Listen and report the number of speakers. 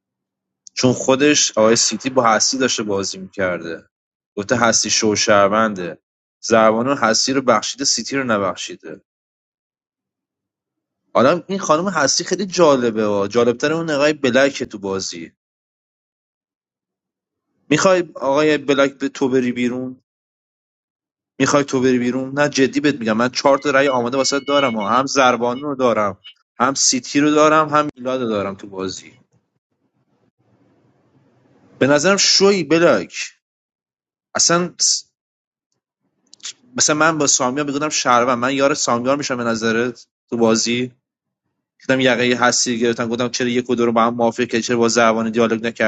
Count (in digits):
1